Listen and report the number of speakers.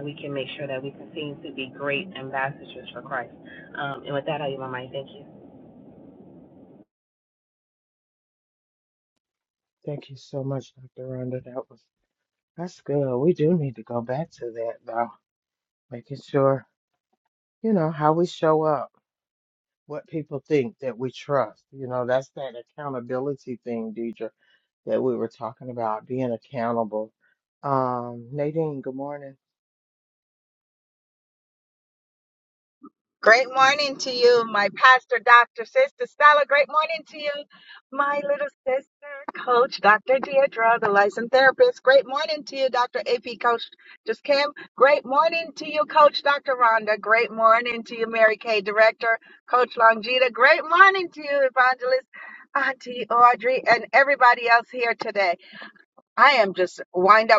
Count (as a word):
three